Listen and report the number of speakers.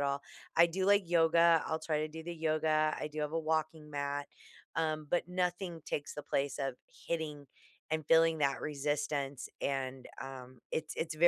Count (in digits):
1